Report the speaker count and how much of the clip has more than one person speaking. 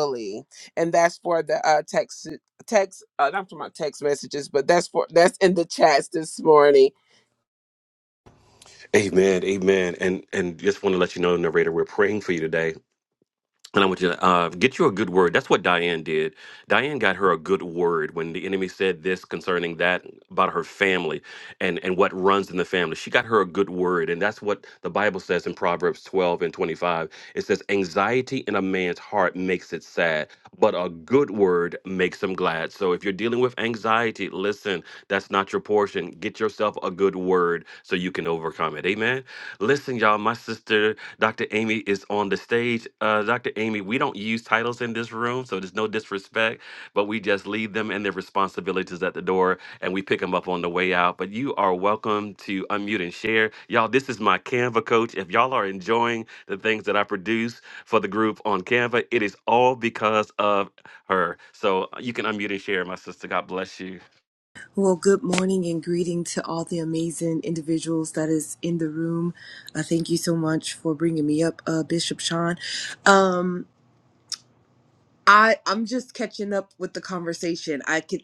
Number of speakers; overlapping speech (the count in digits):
3, no overlap